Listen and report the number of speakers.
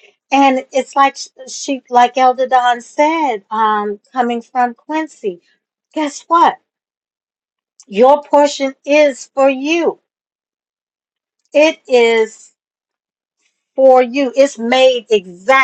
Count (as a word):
one